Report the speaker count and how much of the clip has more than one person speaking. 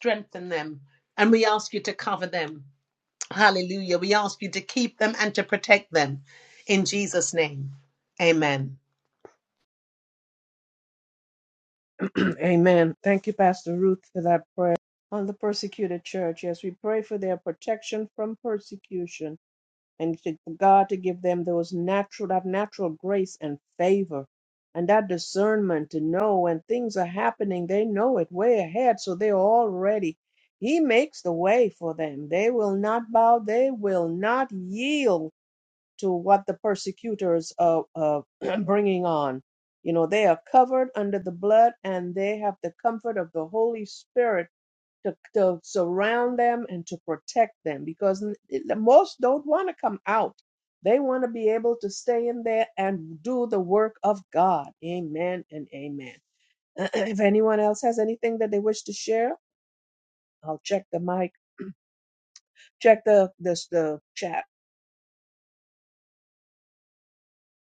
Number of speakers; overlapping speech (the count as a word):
two, no overlap